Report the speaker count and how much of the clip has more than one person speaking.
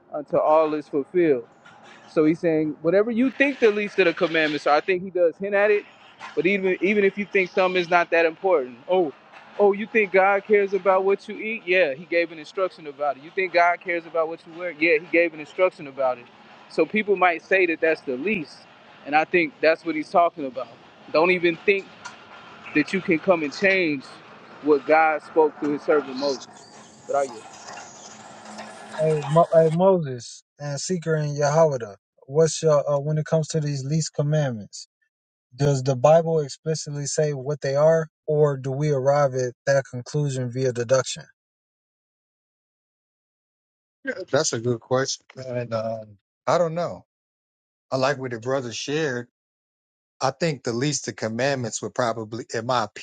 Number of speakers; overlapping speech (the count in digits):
3, no overlap